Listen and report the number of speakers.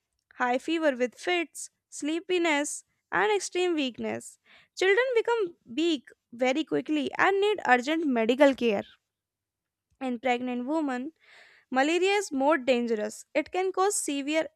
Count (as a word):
one